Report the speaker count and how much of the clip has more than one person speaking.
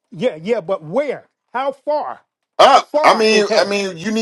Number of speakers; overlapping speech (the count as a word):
two, about 26%